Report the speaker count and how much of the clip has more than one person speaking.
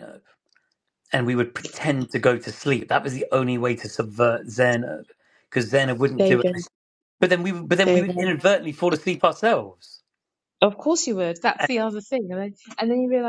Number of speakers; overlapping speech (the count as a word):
two, about 7%